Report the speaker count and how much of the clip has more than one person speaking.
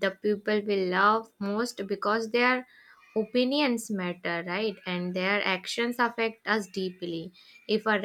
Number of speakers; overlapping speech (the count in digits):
1, no overlap